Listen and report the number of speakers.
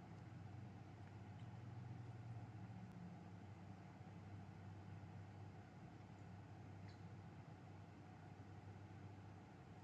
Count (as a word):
zero